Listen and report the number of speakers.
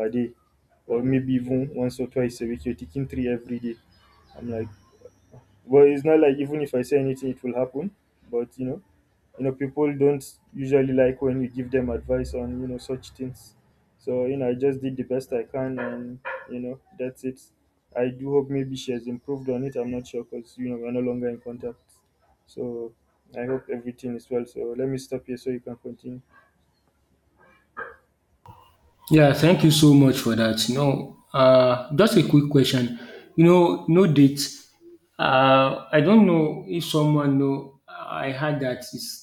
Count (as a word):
two